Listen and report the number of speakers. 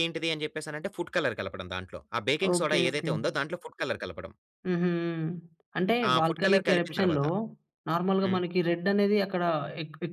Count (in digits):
2